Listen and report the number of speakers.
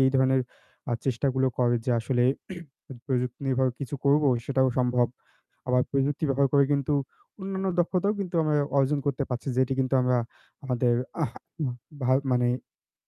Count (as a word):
one